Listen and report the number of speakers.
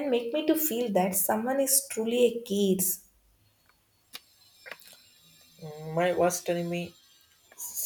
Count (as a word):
two